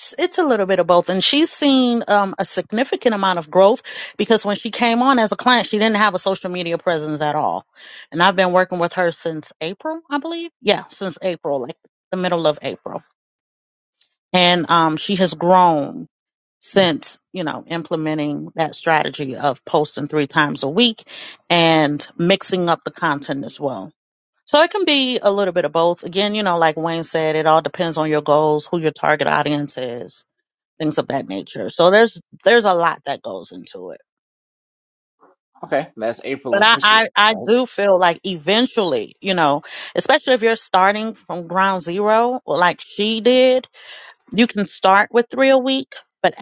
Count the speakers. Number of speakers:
2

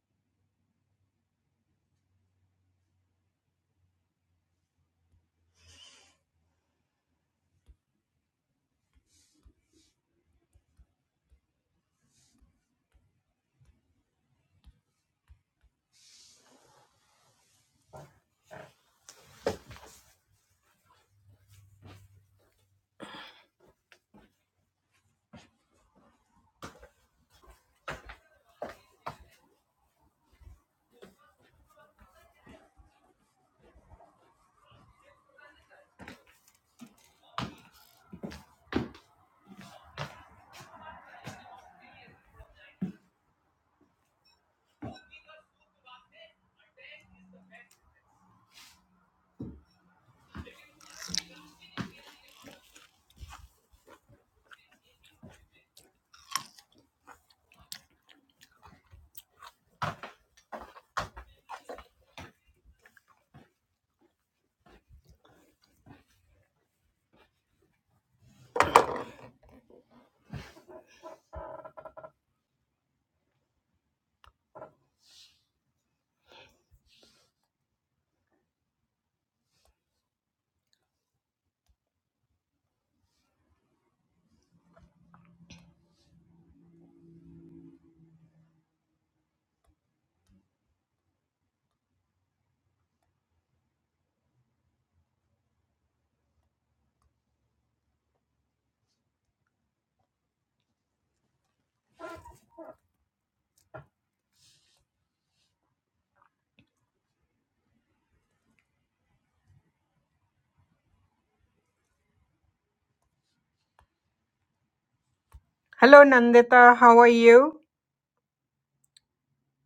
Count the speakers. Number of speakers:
1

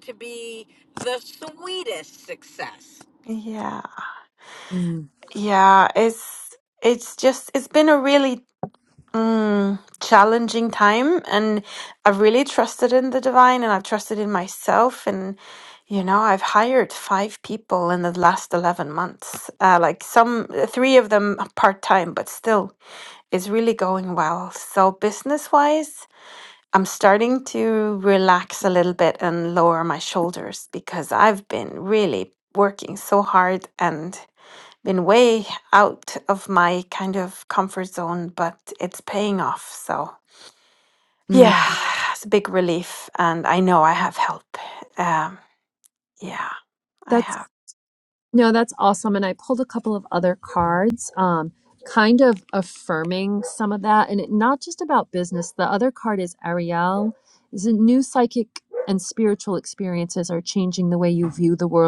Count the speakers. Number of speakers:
3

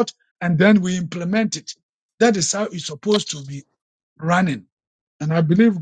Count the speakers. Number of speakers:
1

